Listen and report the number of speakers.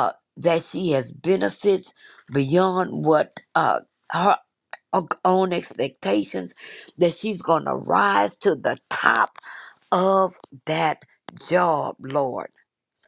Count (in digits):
1